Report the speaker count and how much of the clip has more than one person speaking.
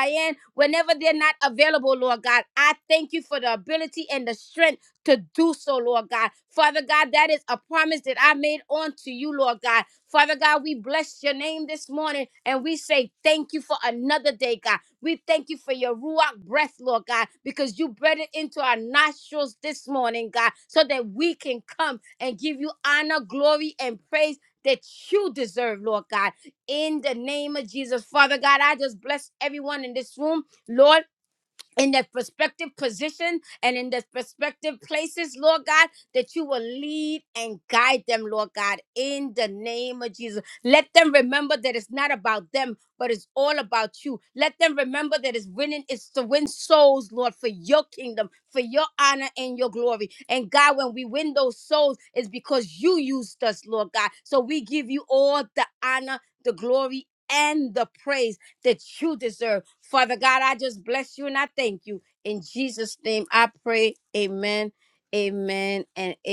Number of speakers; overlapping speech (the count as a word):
one, no overlap